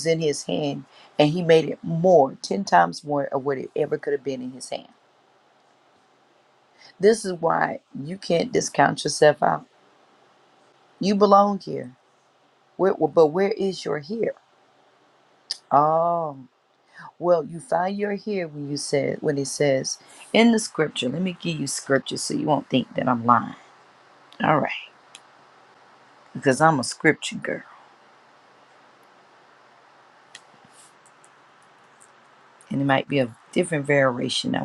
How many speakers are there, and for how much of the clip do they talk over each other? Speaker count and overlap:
one, no overlap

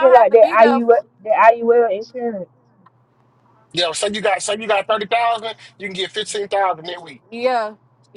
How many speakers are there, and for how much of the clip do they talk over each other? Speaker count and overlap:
three, about 13%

